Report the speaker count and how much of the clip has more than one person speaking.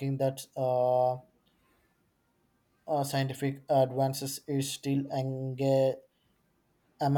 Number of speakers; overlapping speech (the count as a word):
one, no overlap